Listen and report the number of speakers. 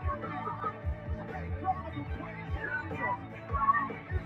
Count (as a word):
zero